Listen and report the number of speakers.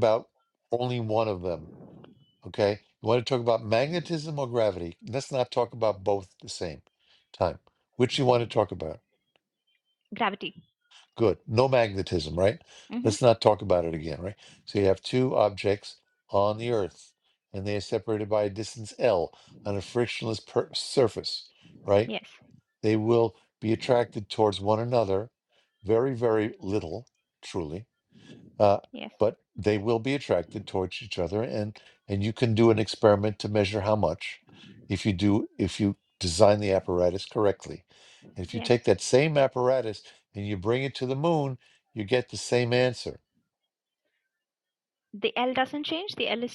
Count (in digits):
2